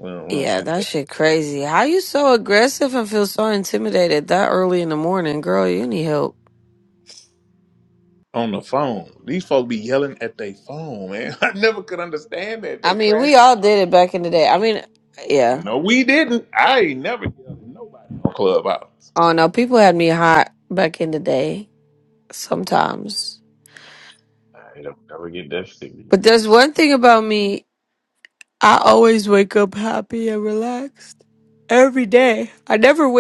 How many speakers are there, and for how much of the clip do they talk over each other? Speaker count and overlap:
three, about 3%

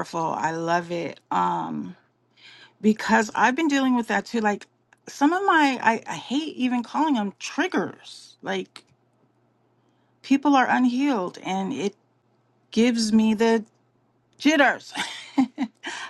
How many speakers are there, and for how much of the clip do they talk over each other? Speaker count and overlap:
one, no overlap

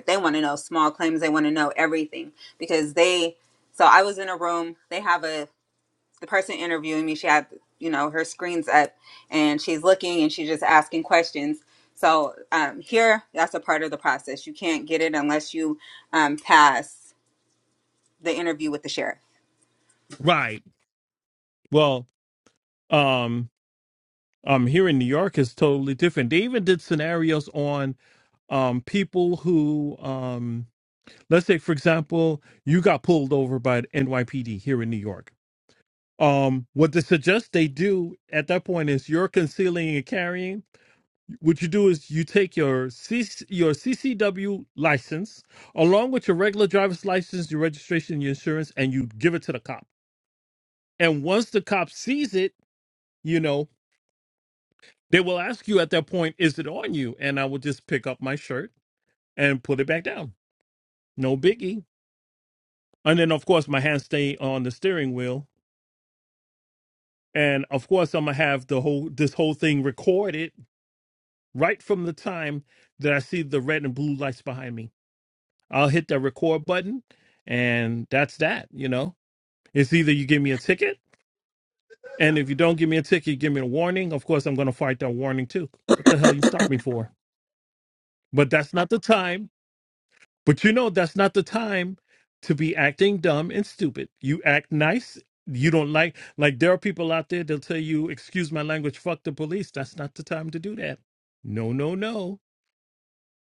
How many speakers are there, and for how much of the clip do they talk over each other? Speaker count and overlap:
two, no overlap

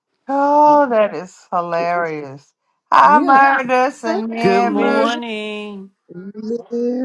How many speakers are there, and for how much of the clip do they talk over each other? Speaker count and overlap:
three, about 20%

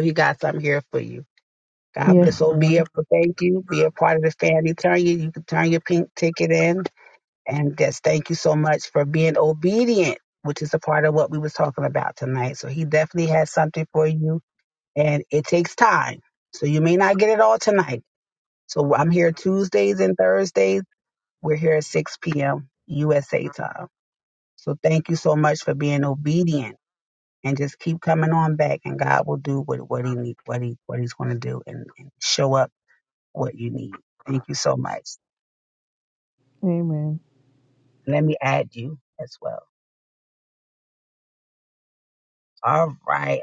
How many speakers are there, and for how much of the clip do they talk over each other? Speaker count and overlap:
two, about 2%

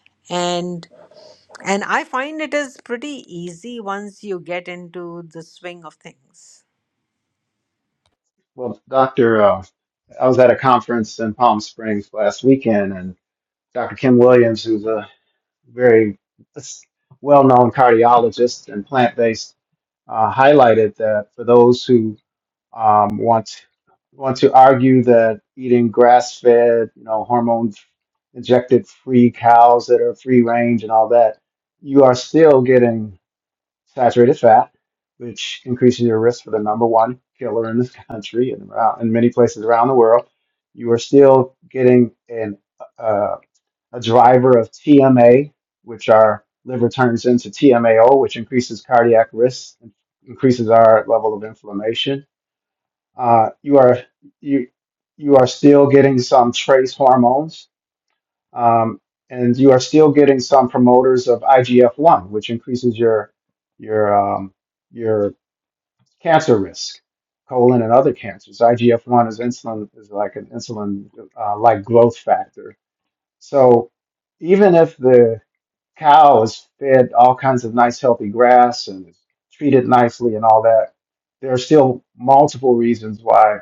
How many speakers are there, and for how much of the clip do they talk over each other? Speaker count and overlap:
two, no overlap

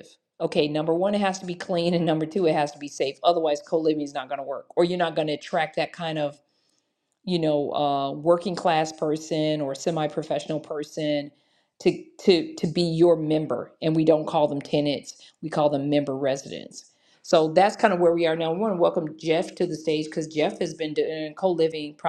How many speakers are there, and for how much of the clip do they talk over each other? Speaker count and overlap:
one, no overlap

